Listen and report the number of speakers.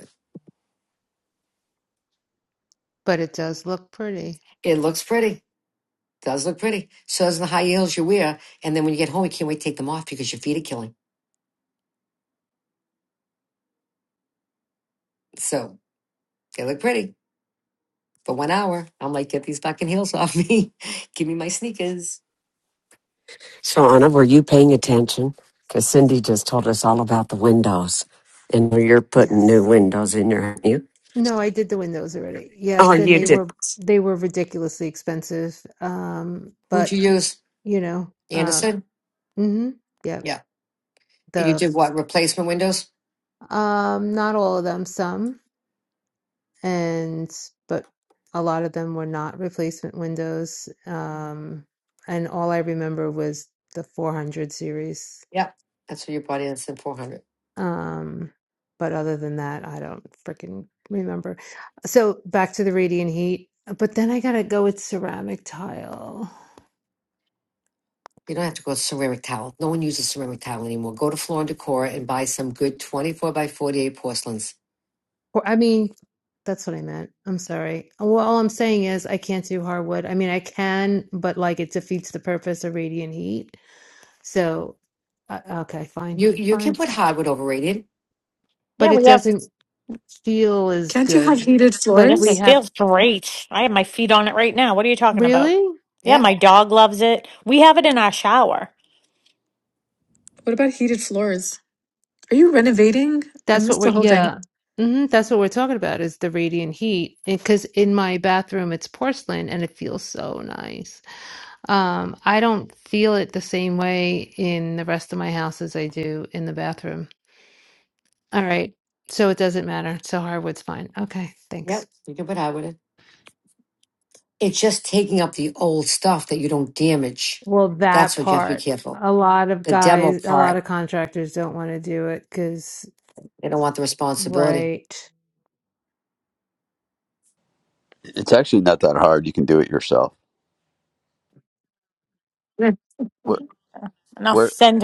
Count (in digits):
6